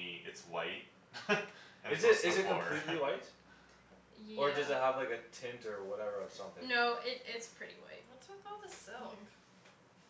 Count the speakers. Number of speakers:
4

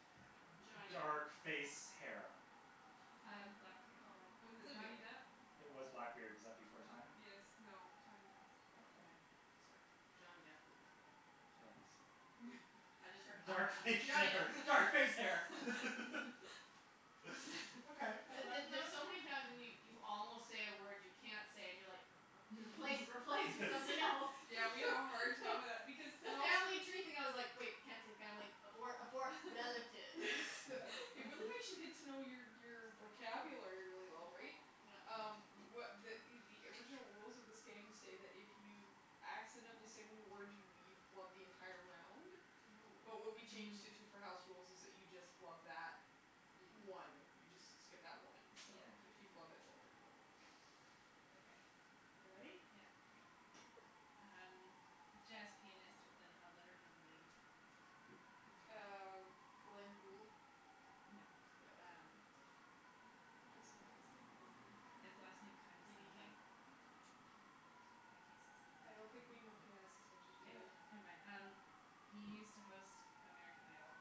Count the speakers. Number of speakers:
4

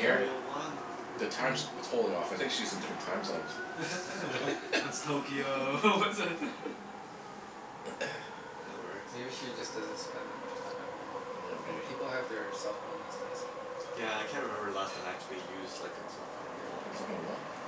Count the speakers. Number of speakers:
4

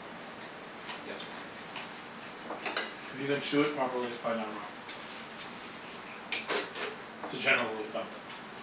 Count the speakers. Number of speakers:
1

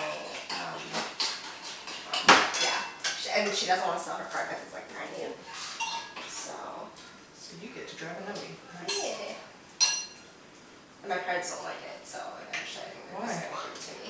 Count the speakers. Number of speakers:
2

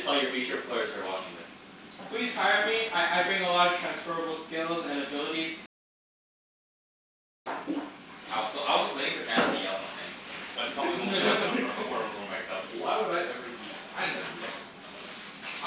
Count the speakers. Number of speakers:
3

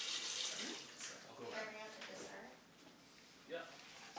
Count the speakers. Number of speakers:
2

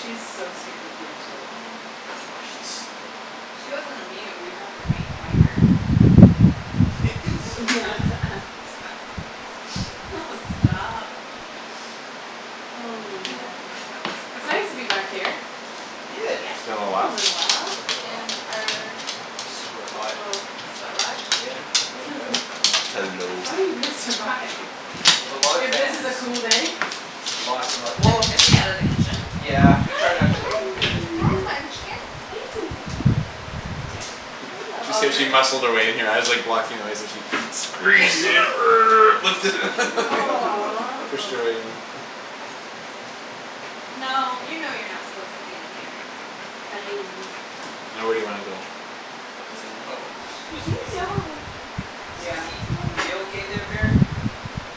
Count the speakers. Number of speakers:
4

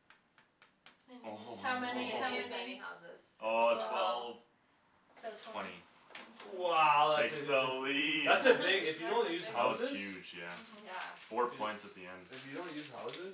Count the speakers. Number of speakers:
4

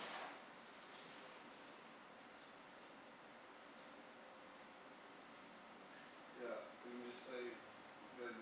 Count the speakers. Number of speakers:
1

